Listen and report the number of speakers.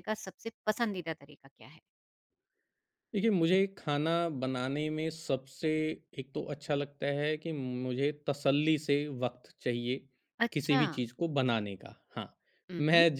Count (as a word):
two